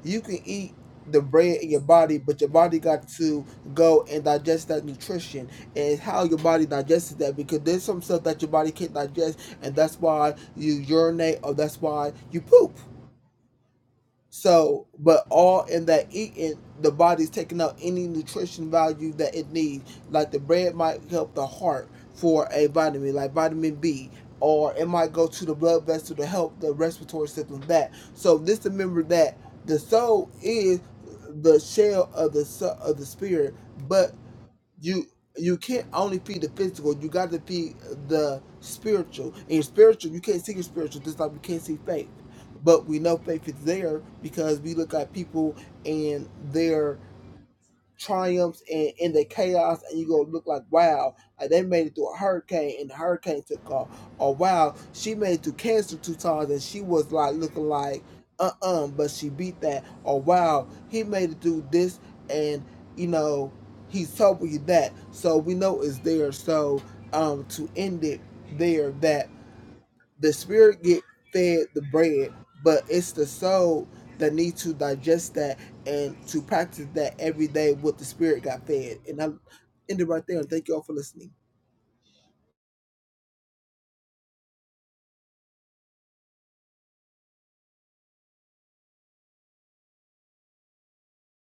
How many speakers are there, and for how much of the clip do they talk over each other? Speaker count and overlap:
1, no overlap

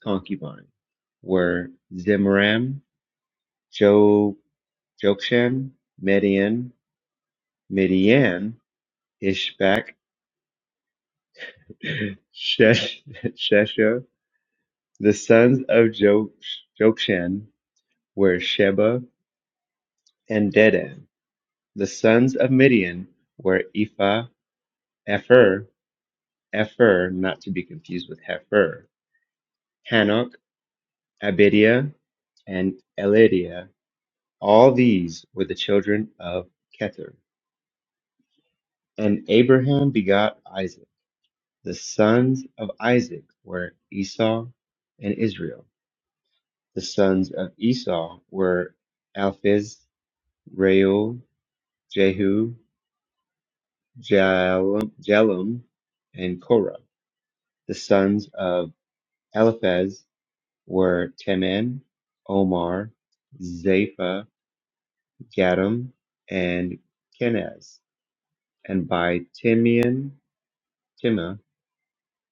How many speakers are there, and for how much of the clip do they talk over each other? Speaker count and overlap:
1, no overlap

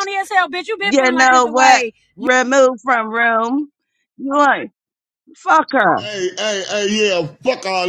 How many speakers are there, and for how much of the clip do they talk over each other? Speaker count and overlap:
3, about 13%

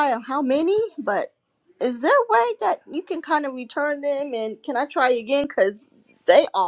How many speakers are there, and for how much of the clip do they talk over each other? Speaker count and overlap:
1, no overlap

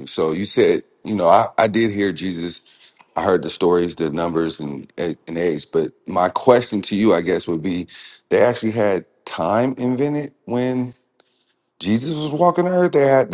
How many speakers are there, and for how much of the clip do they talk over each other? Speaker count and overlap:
1, no overlap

